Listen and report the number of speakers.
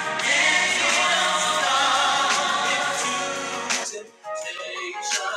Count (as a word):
zero